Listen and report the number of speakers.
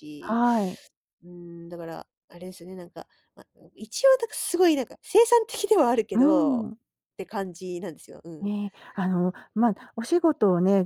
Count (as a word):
two